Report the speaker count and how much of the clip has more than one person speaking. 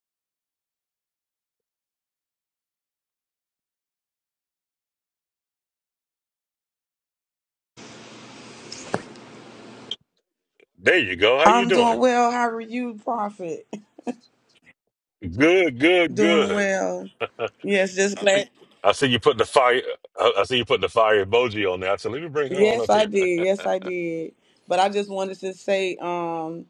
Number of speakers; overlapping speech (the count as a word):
two, about 6%